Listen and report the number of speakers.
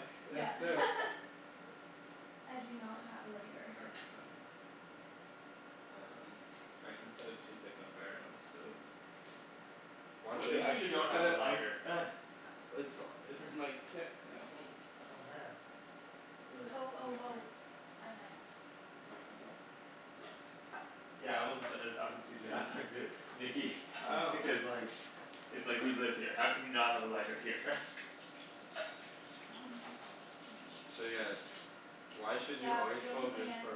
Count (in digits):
4